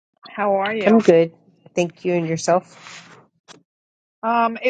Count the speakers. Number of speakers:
two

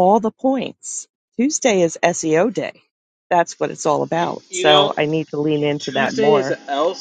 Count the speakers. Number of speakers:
two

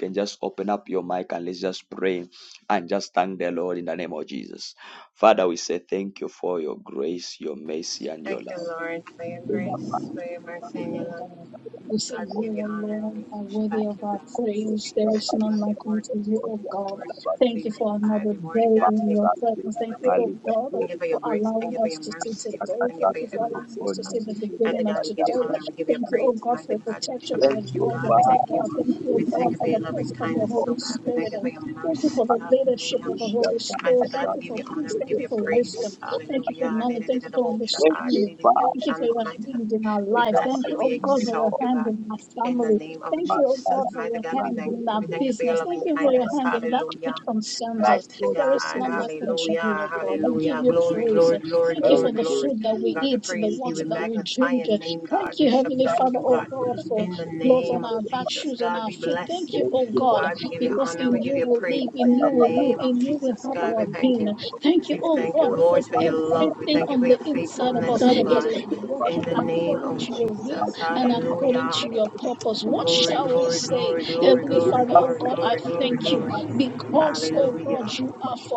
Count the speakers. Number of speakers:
three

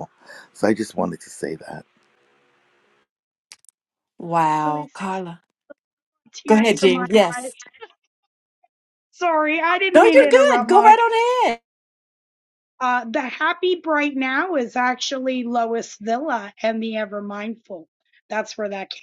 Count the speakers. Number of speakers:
three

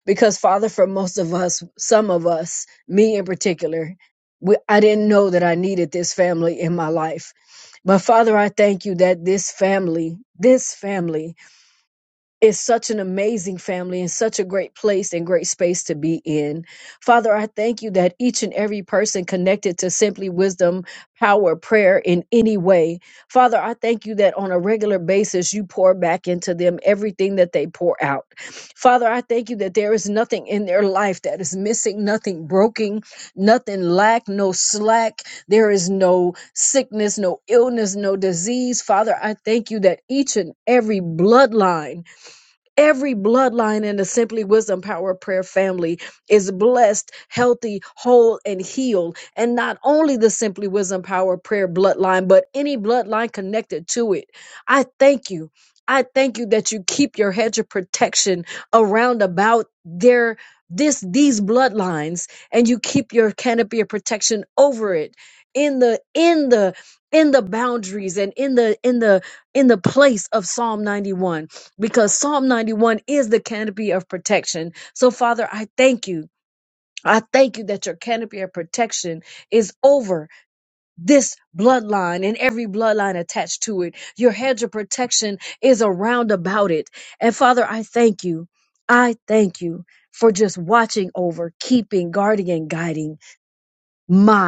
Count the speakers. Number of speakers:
one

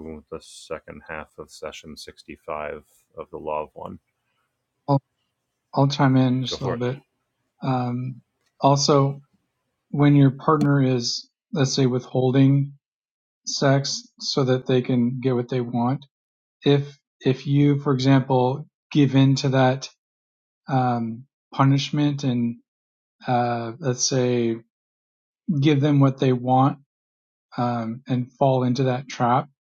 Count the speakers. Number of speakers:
two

